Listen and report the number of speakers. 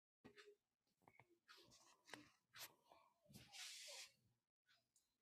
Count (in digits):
0